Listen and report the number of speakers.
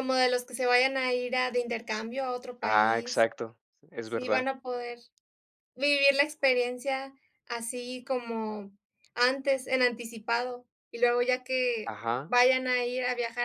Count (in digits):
2